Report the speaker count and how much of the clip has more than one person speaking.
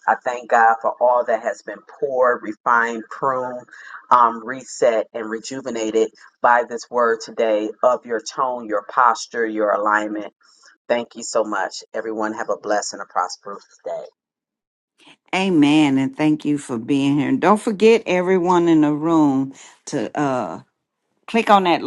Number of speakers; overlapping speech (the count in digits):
2, no overlap